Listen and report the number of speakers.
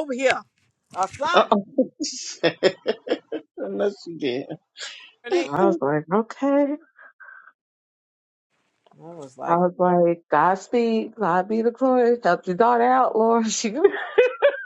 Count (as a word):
three